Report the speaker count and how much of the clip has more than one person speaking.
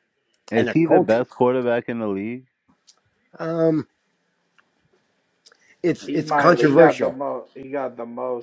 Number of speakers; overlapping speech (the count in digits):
3, about 20%